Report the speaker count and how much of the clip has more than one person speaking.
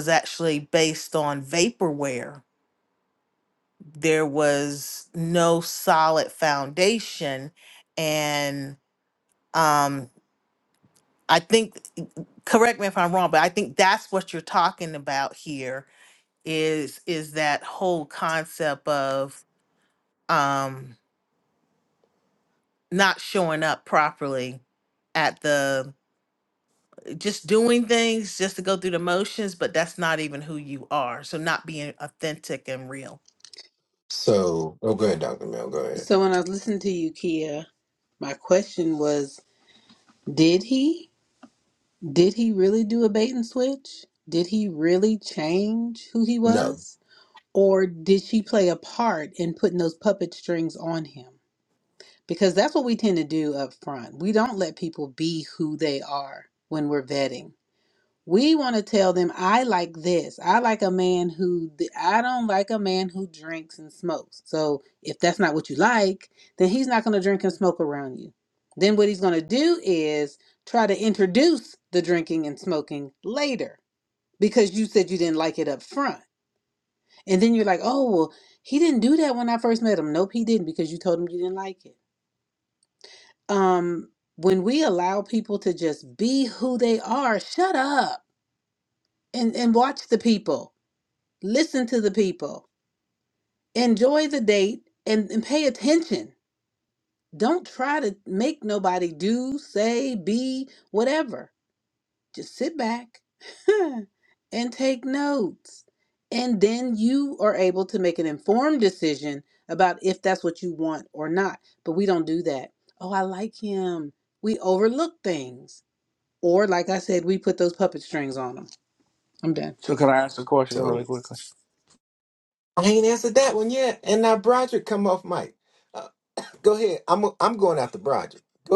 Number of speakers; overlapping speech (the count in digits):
4, about 1%